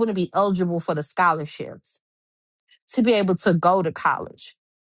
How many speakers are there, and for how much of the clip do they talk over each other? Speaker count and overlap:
one, no overlap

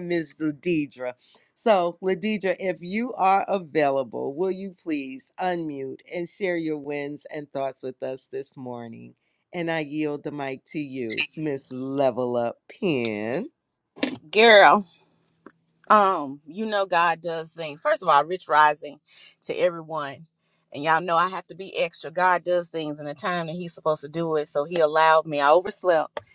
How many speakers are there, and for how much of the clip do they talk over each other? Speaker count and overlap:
two, no overlap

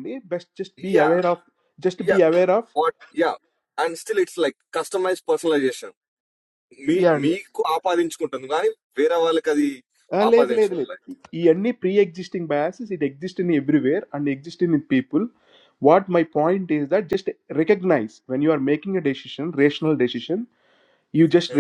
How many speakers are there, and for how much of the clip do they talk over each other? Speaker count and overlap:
two, about 5%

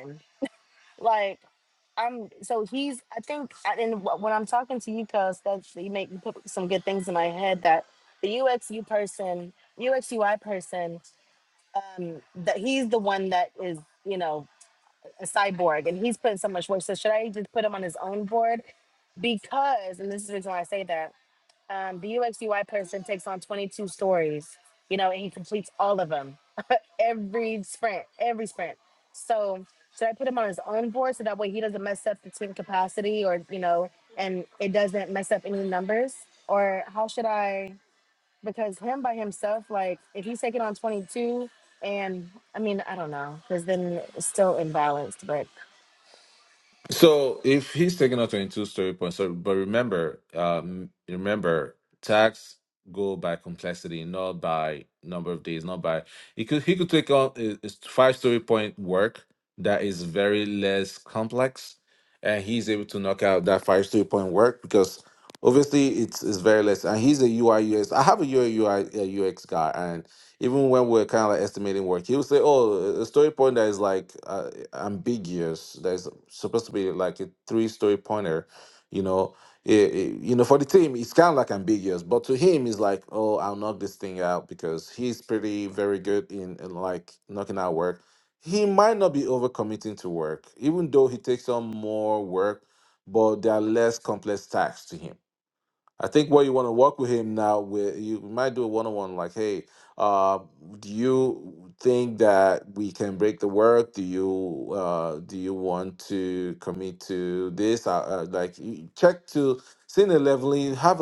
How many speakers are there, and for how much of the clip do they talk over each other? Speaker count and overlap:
two, no overlap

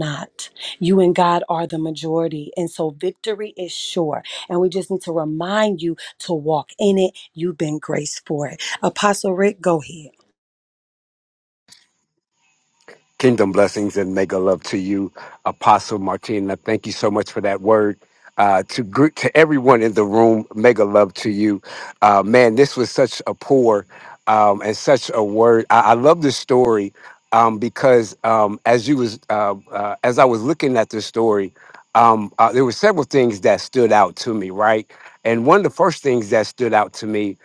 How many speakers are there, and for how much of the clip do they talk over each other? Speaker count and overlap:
two, no overlap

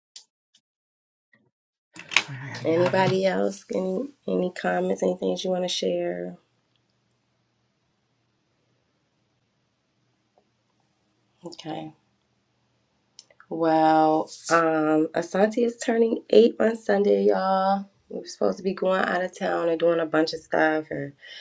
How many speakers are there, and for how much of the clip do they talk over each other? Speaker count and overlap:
two, about 3%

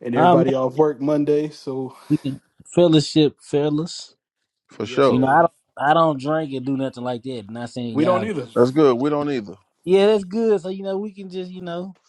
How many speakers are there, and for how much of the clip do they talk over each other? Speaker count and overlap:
three, about 10%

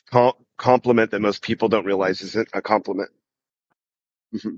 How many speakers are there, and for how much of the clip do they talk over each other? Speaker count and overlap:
one, no overlap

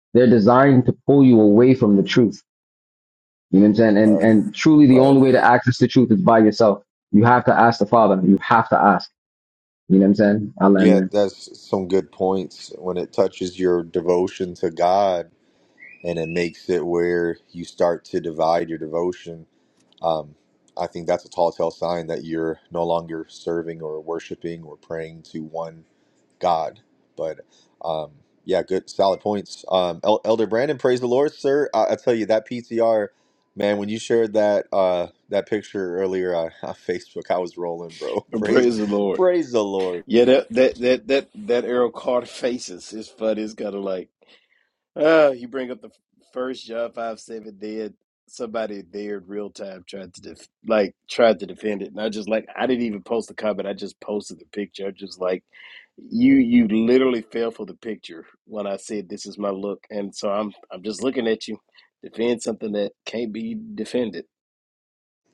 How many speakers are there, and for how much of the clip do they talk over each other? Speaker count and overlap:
three, about 2%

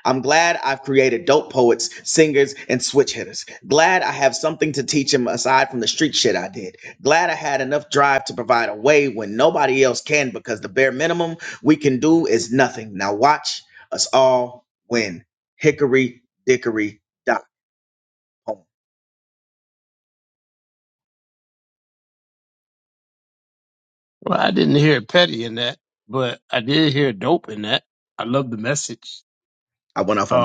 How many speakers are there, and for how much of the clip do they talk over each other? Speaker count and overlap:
two, about 1%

